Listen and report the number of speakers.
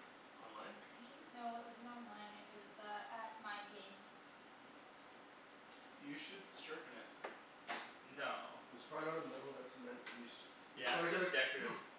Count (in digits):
4